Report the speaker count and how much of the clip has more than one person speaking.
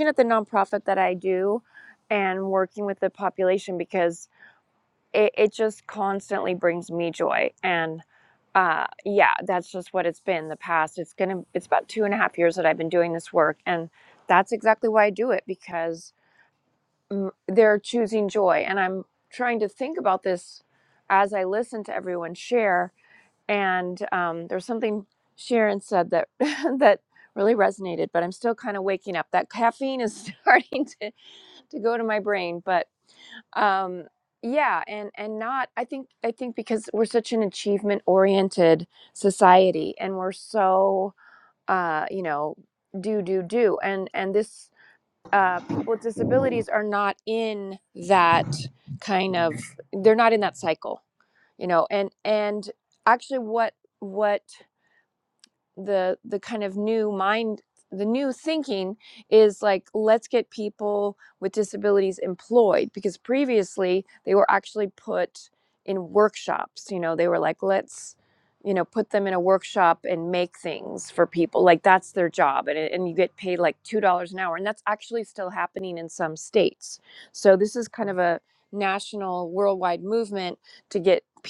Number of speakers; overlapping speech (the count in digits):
1, no overlap